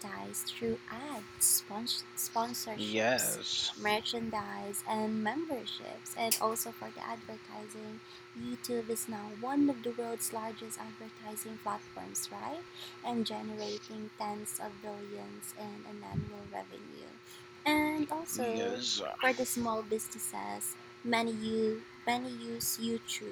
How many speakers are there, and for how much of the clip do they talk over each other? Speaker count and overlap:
2, about 3%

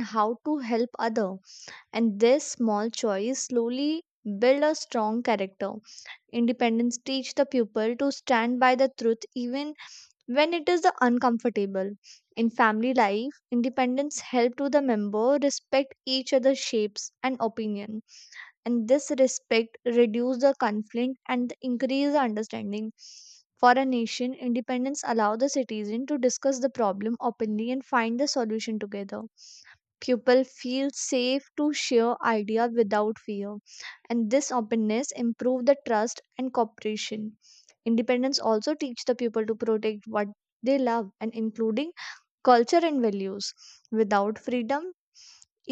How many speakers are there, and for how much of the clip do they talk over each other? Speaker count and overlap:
1, no overlap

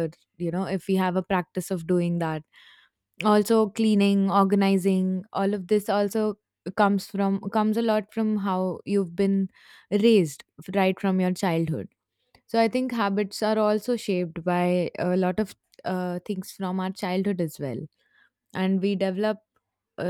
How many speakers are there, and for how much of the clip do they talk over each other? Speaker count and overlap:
1, no overlap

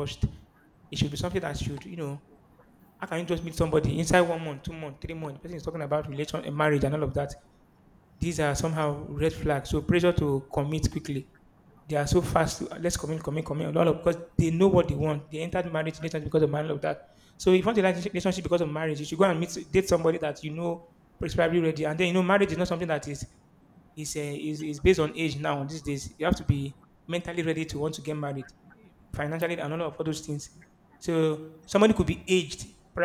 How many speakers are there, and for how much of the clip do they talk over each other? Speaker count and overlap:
1, no overlap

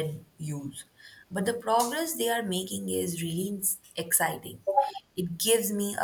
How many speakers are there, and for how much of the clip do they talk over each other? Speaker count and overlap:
1, no overlap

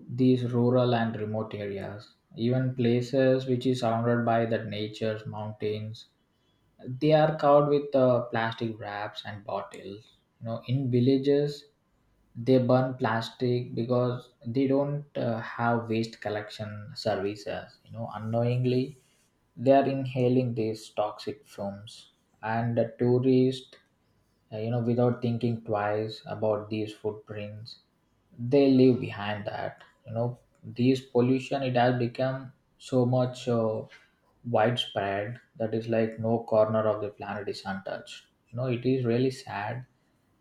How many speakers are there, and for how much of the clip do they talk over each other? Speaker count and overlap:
1, no overlap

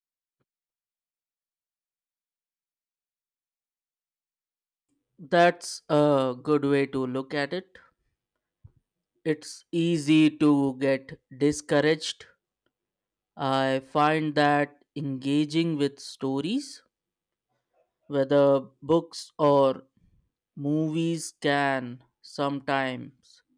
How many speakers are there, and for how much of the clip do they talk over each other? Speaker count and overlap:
1, no overlap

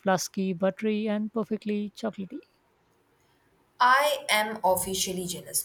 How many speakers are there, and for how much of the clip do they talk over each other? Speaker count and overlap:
2, no overlap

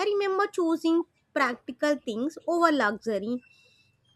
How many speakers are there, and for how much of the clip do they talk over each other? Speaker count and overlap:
1, no overlap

